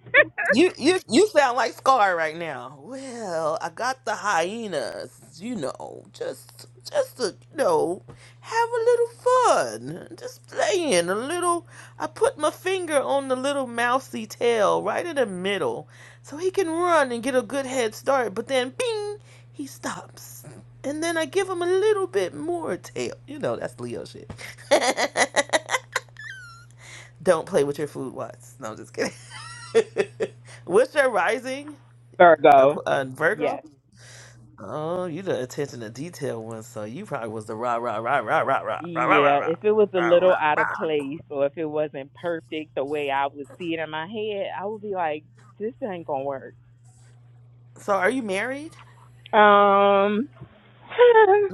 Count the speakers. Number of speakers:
two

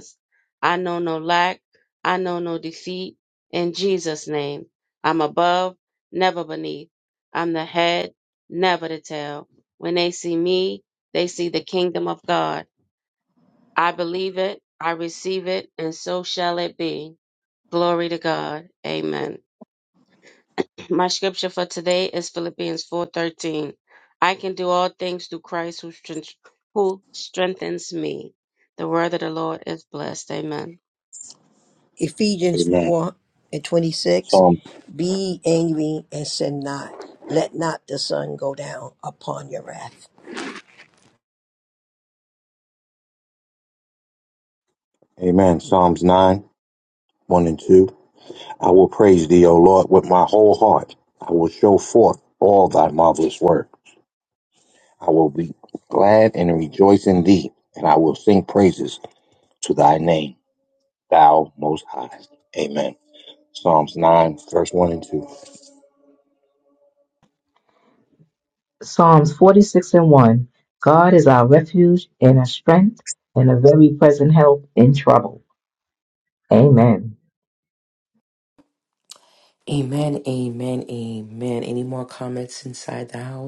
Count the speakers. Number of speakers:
five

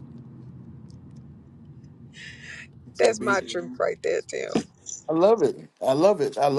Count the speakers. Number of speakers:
two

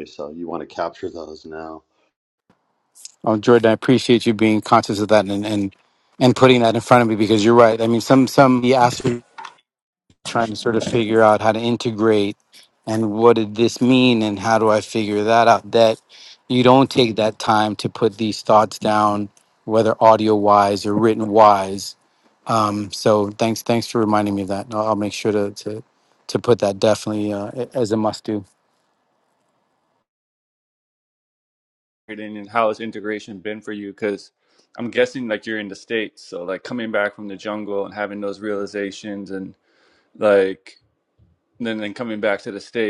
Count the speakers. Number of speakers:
three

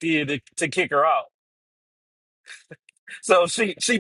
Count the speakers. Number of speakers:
one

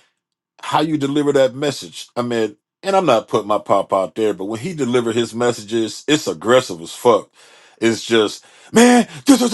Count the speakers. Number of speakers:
one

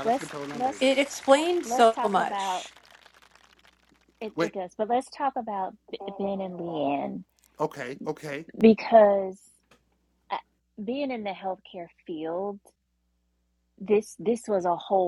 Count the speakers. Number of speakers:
three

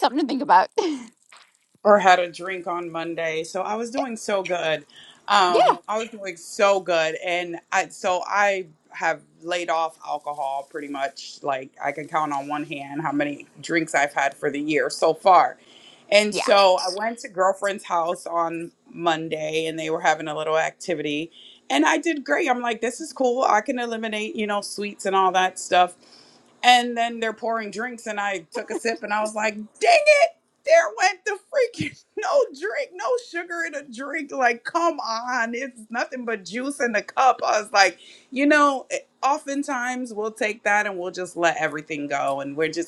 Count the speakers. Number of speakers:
two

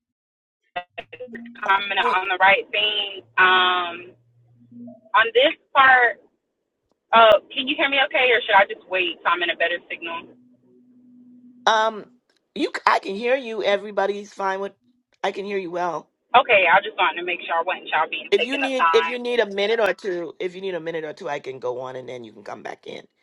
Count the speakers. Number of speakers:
two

